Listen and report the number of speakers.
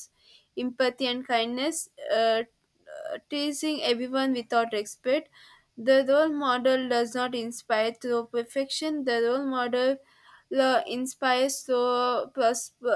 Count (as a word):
one